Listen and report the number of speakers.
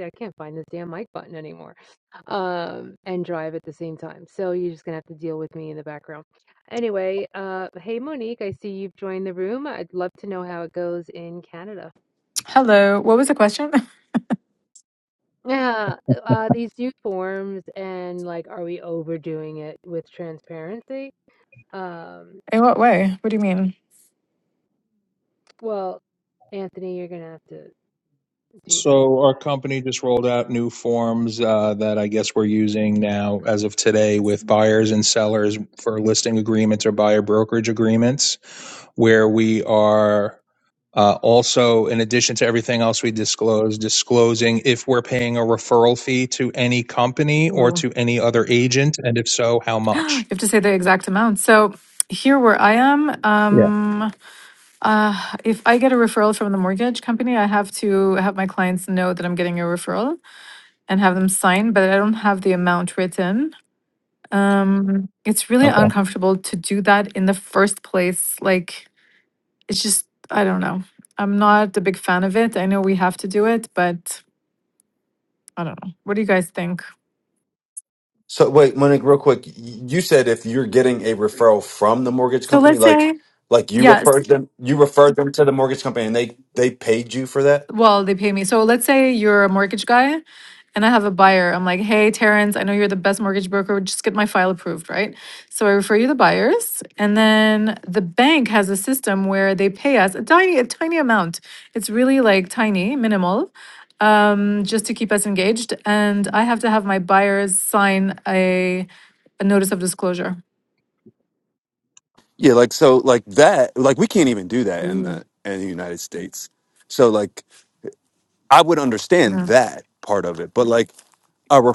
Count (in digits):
4